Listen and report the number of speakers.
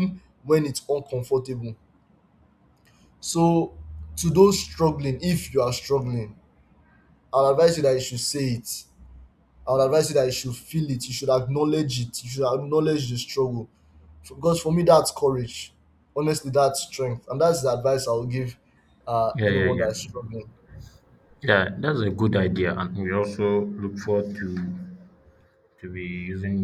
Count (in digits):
2